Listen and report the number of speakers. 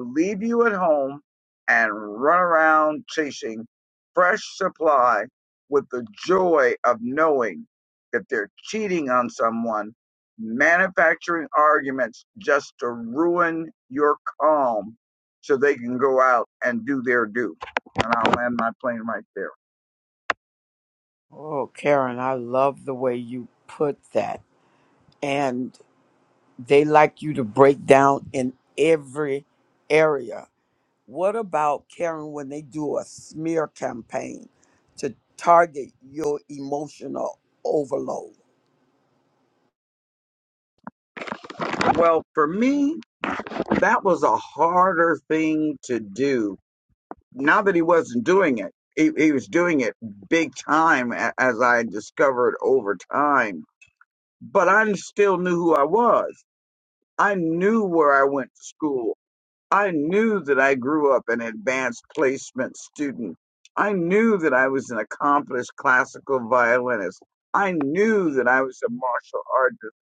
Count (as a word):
two